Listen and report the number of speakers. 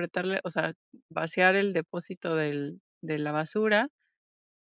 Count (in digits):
1